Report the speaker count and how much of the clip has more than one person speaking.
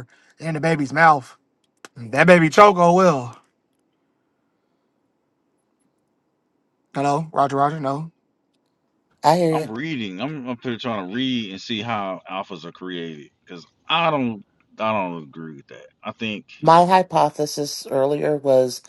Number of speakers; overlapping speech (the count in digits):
3, about 1%